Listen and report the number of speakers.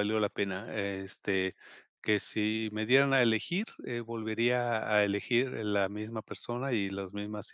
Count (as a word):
one